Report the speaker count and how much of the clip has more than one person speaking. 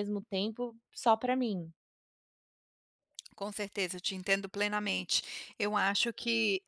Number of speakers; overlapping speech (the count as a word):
two, no overlap